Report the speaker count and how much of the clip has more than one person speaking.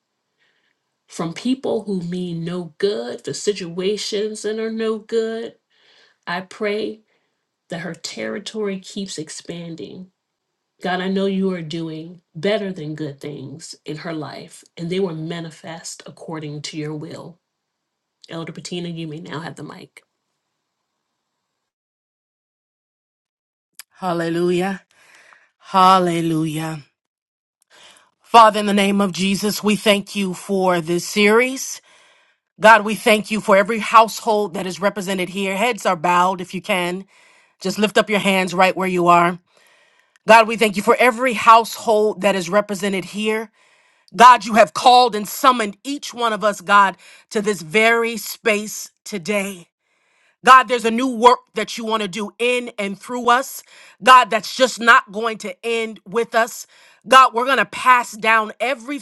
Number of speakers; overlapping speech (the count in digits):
2, no overlap